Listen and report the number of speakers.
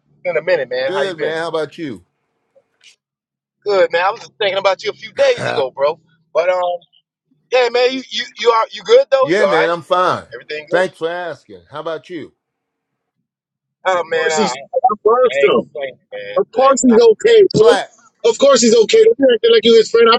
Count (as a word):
three